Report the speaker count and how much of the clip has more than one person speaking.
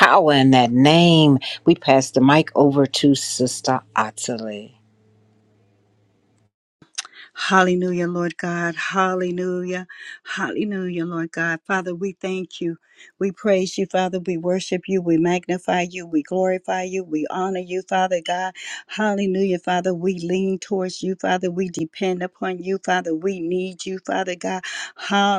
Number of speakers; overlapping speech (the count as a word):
two, no overlap